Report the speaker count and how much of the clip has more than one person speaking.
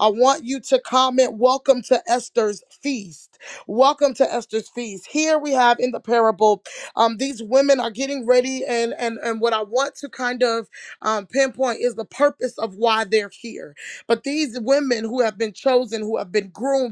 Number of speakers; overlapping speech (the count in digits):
1, no overlap